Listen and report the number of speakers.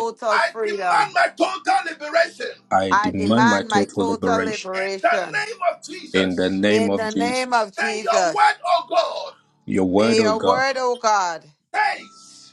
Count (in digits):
3